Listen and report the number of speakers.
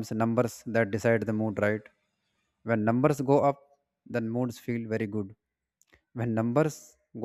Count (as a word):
one